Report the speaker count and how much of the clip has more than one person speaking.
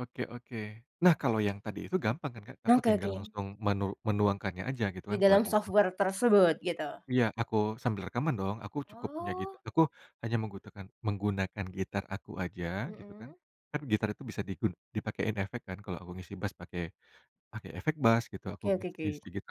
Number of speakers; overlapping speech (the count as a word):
two, about 14%